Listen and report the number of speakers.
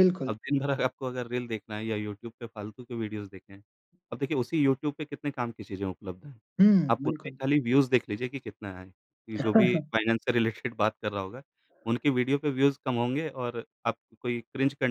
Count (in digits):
2